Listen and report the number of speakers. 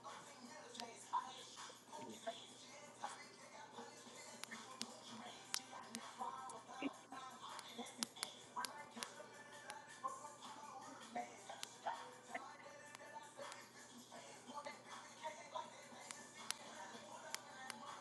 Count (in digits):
0